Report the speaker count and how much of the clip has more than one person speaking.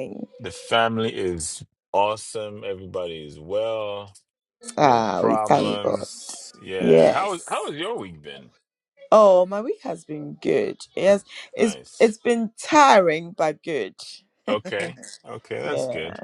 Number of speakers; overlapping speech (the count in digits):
2, about 14%